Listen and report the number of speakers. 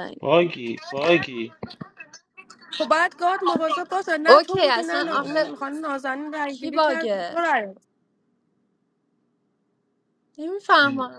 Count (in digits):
3